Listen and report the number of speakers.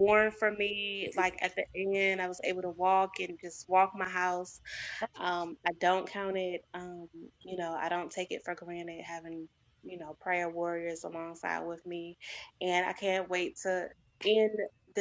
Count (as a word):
one